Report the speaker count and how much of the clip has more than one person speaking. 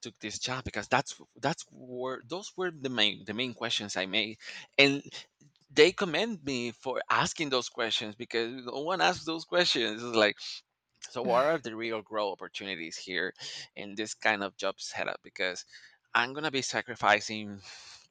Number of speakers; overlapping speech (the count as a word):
one, no overlap